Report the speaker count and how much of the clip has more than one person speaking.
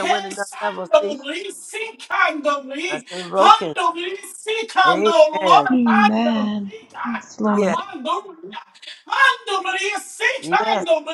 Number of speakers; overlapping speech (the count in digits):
3, about 33%